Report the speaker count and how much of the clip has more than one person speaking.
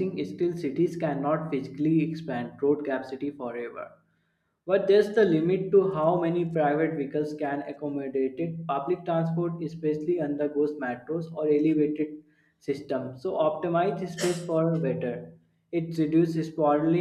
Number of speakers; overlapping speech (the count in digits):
1, no overlap